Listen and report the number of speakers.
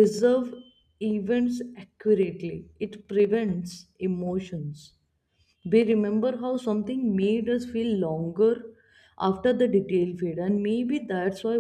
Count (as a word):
one